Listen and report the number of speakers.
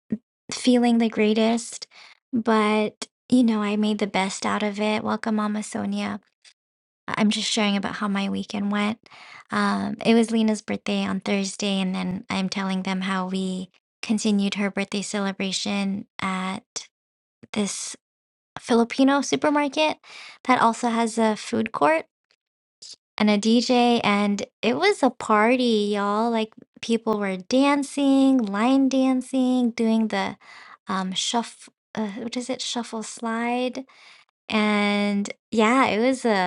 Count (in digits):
1